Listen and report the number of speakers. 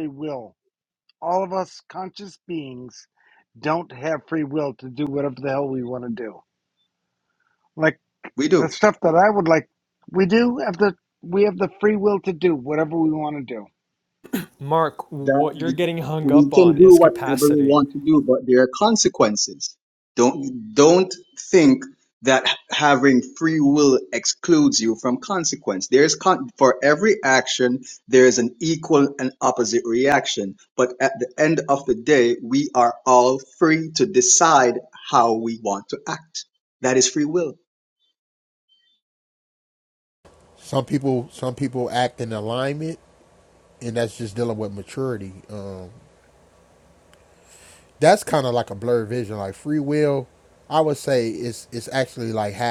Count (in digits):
4